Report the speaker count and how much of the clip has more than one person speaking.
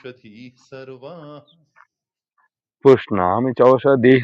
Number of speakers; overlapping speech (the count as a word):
two, no overlap